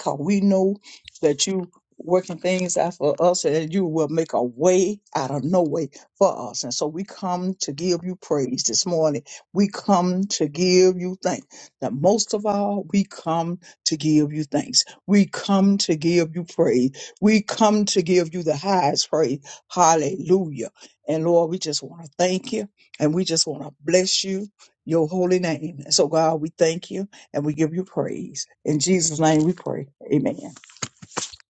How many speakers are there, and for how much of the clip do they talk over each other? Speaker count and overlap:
1, no overlap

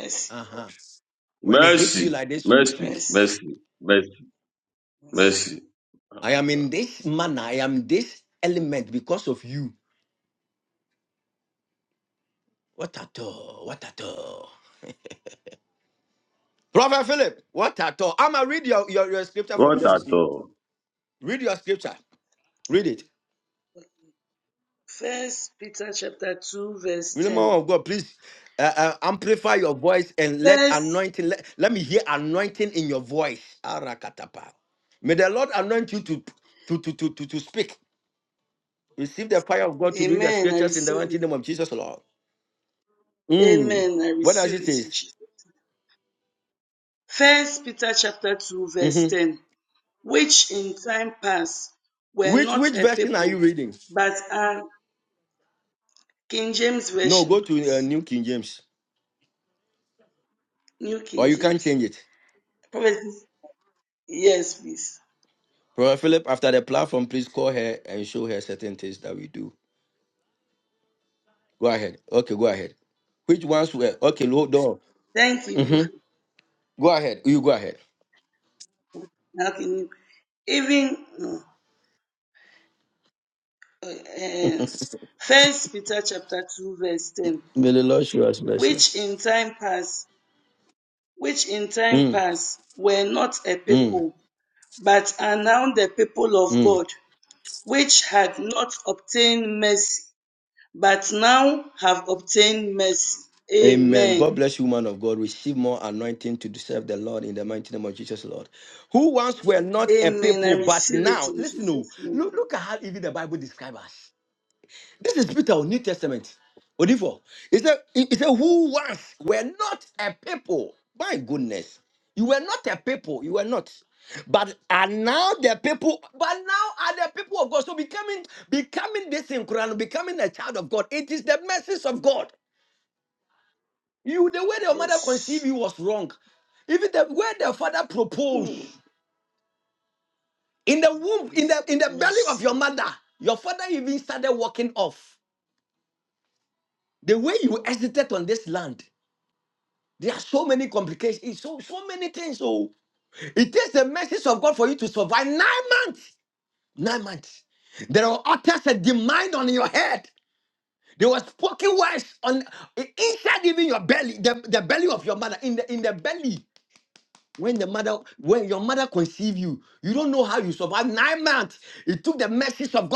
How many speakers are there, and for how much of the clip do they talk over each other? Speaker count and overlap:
3, about 8%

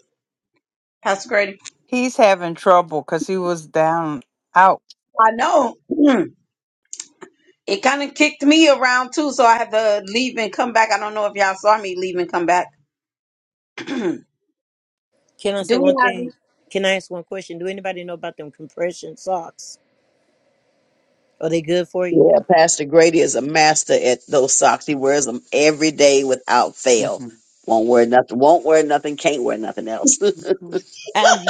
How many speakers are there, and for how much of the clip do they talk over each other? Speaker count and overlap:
4, about 3%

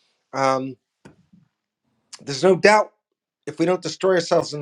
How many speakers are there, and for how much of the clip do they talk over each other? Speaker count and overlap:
1, no overlap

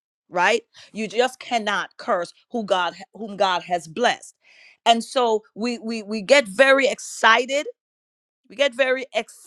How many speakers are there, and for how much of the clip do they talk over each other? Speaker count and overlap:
1, no overlap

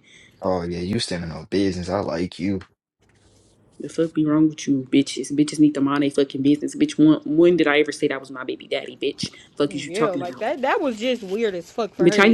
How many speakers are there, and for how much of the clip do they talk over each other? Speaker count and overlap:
3, about 8%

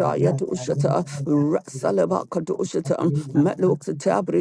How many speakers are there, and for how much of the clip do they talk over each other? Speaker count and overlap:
2, about 56%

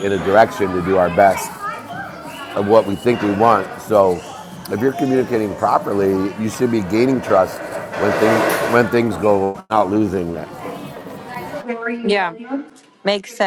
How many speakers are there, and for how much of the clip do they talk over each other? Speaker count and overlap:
2, no overlap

